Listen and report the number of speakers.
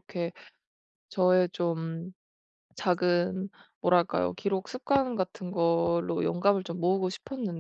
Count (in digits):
1